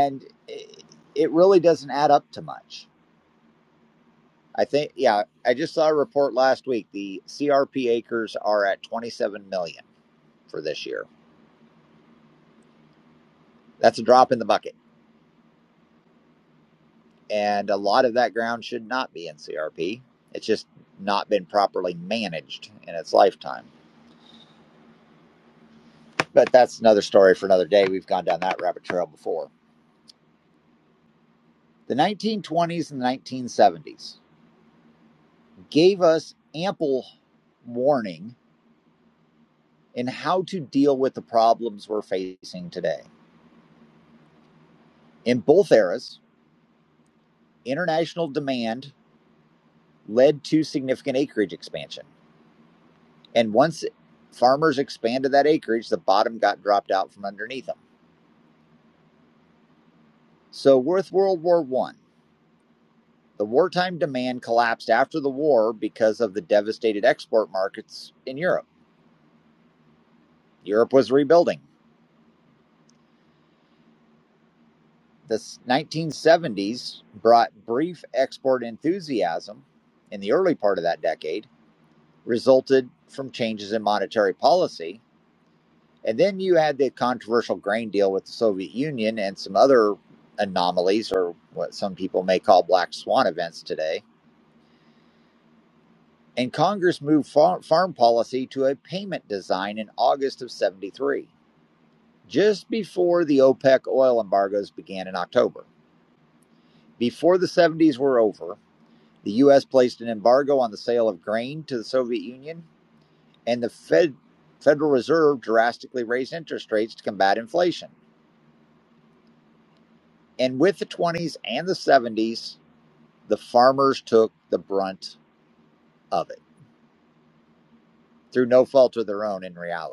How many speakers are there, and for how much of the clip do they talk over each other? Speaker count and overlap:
1, no overlap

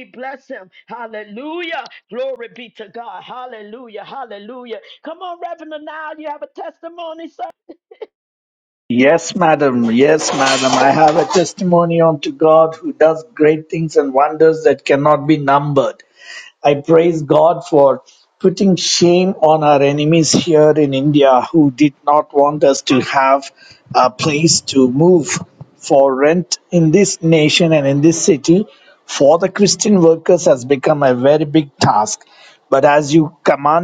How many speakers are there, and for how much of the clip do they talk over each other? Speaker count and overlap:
2, no overlap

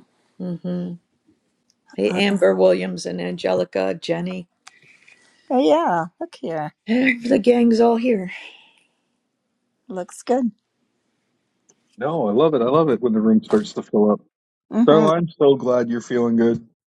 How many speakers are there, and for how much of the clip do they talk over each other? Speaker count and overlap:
3, about 2%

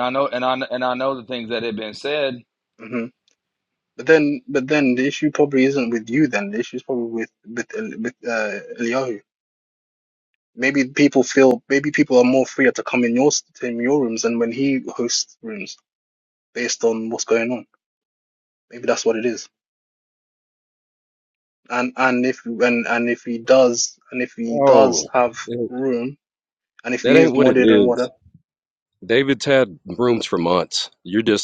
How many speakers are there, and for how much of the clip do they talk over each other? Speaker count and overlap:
3, about 5%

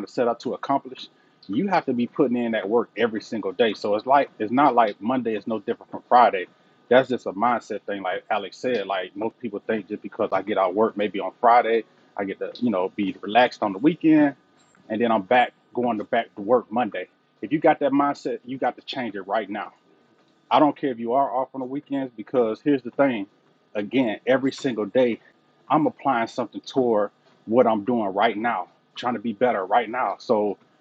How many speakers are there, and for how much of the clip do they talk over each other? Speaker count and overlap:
1, no overlap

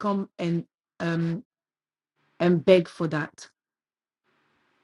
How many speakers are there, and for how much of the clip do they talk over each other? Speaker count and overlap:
1, no overlap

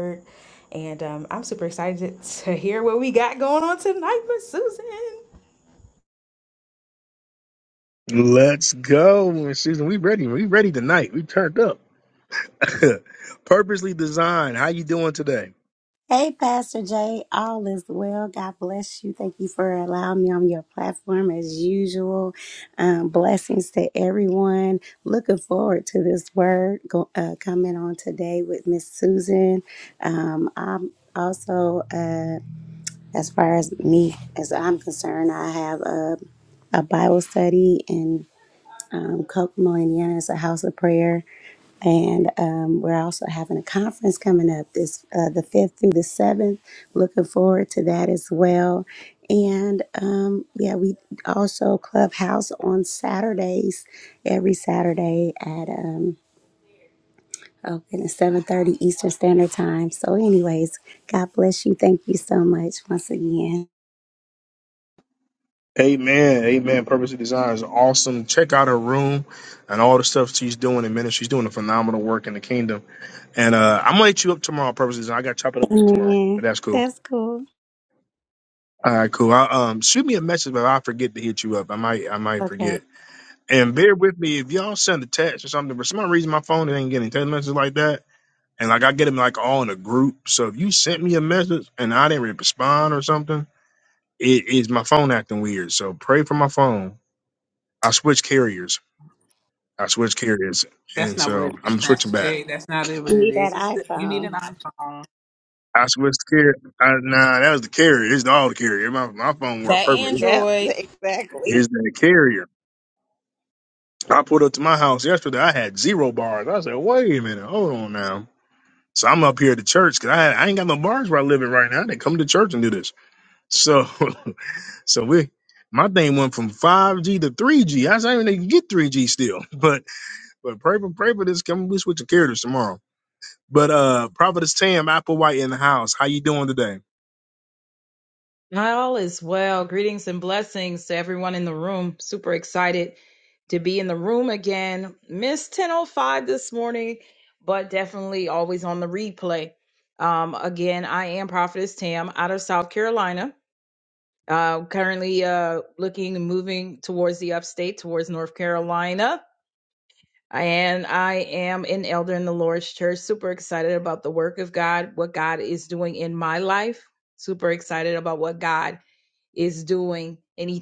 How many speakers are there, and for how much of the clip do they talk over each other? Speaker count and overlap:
5, about 3%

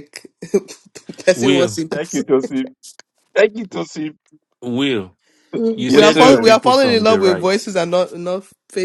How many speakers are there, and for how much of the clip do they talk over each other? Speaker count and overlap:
3, about 27%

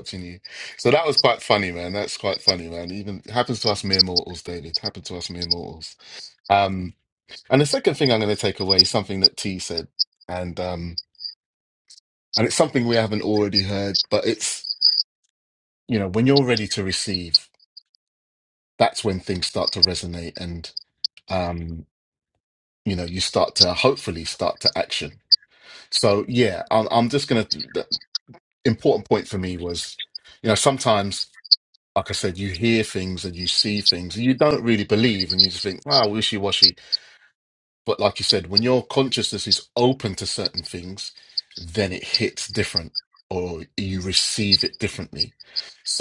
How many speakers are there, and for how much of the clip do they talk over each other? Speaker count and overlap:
1, no overlap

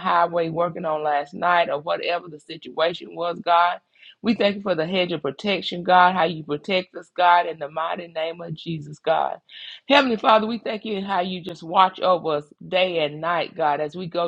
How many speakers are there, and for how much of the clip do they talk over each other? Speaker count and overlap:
1, no overlap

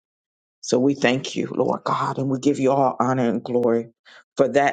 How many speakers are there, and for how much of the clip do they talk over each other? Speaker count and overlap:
1, no overlap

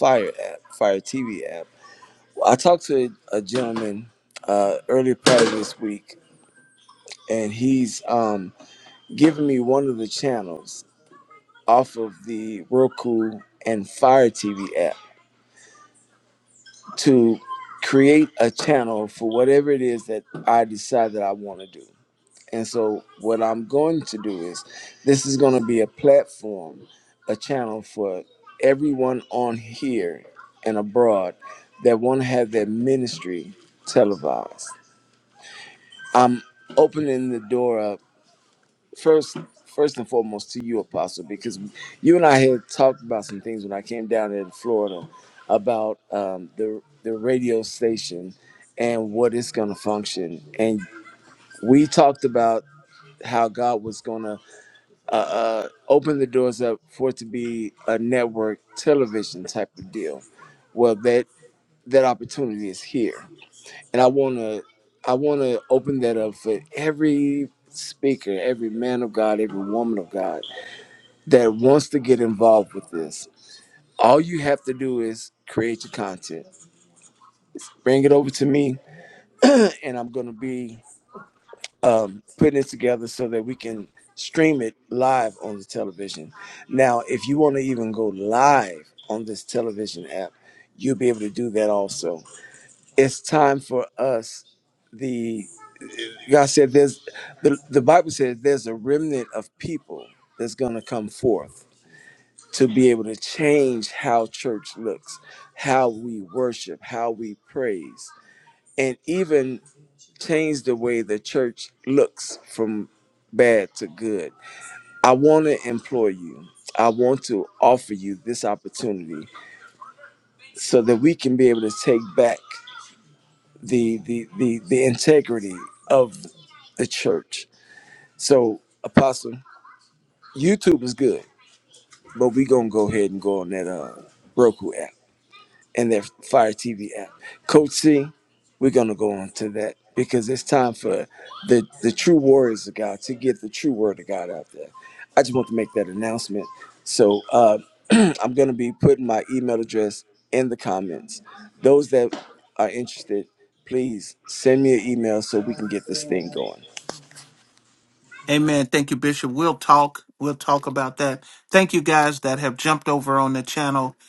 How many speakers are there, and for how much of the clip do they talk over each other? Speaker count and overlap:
2, no overlap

